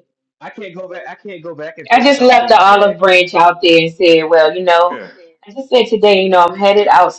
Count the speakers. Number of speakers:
2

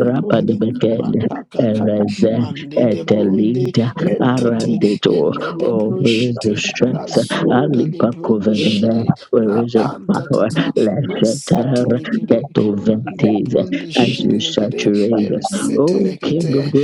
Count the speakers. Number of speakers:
2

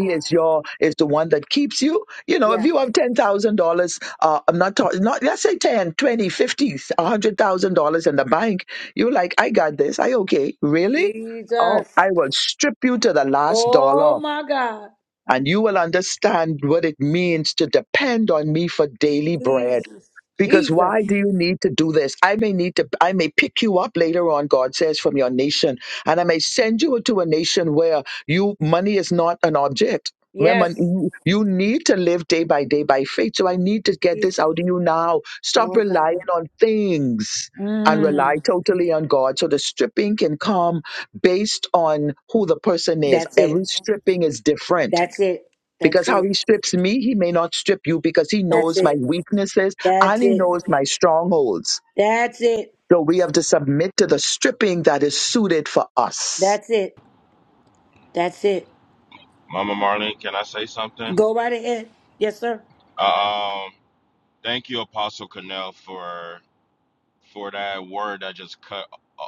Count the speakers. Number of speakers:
3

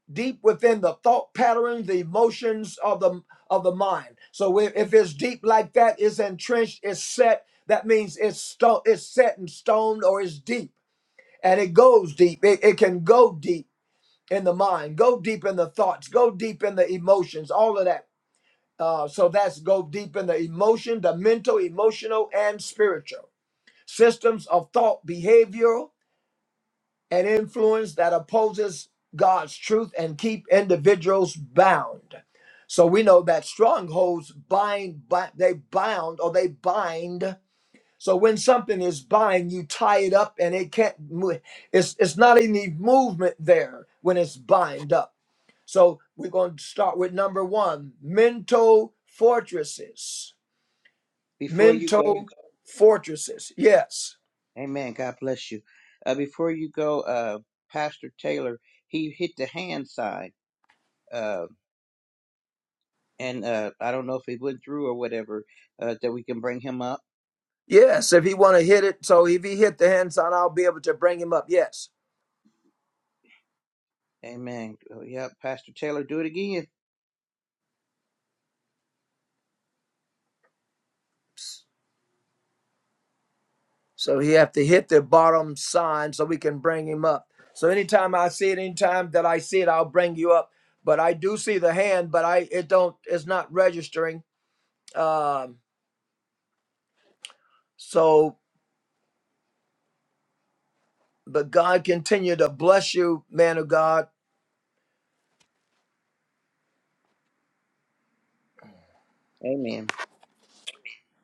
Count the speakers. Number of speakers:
2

